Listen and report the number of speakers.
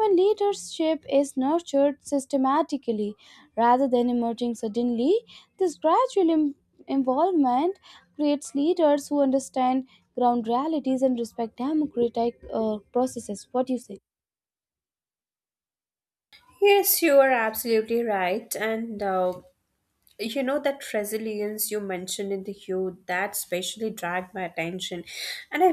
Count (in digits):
2